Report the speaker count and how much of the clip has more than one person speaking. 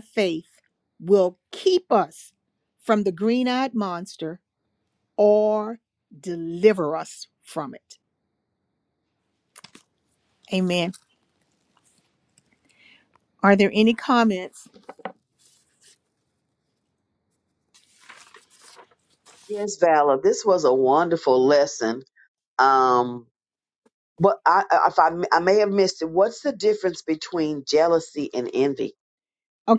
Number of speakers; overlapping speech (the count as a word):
two, no overlap